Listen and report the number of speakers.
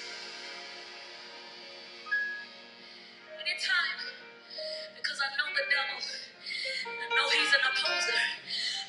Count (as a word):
one